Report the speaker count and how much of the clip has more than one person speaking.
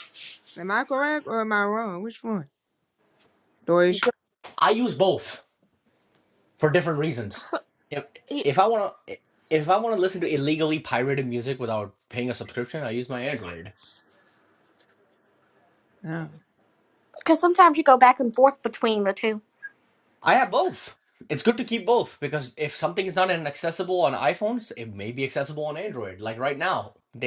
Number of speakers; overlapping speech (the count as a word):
three, under 1%